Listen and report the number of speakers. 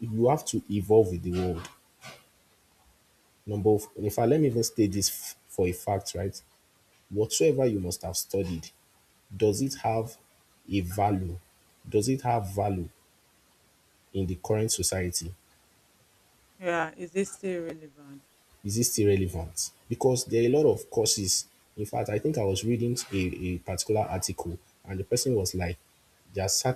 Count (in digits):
2